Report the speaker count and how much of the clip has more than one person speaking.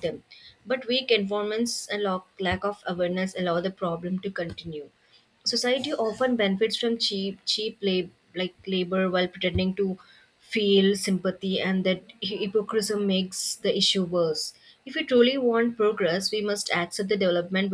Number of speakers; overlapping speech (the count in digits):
1, no overlap